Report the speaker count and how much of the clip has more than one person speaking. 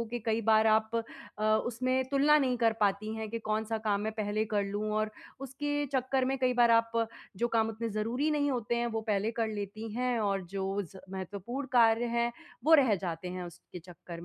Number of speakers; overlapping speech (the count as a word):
one, no overlap